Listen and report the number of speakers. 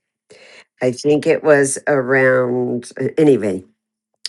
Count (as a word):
one